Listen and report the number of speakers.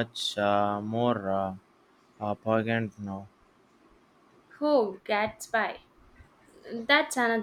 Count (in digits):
2